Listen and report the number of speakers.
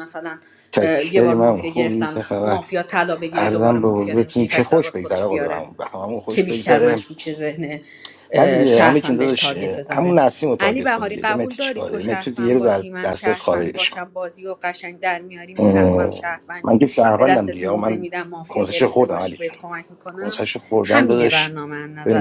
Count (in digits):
2